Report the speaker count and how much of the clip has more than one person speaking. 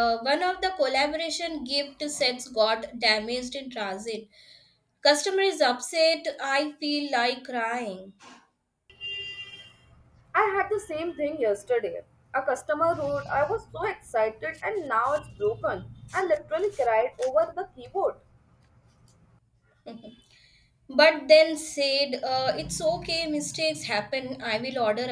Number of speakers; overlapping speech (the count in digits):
2, no overlap